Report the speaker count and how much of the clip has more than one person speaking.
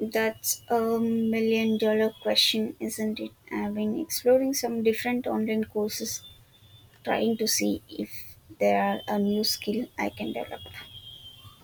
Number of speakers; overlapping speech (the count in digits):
1, no overlap